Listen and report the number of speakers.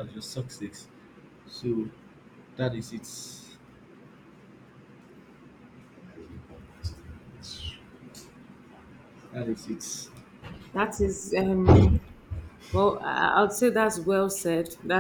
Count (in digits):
2